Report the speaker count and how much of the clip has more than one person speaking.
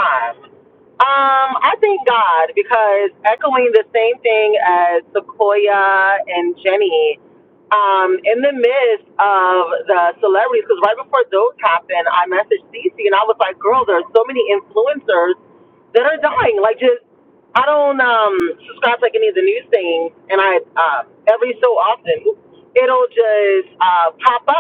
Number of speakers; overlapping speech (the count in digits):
1, no overlap